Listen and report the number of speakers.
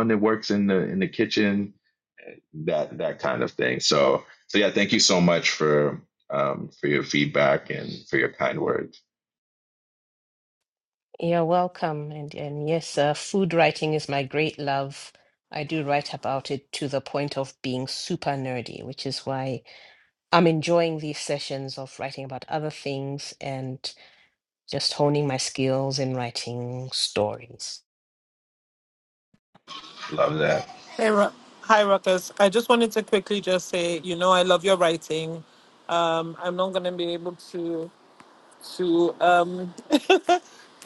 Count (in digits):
3